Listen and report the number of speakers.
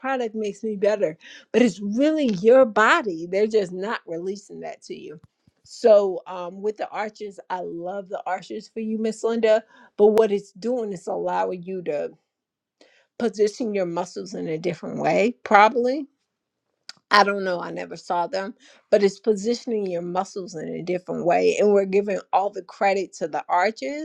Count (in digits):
1